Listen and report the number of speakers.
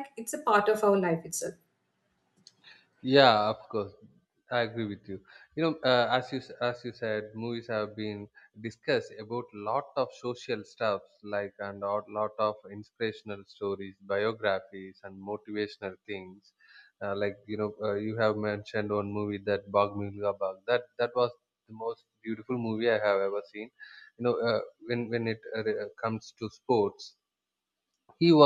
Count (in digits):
2